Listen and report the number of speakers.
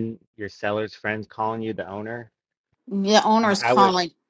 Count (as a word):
two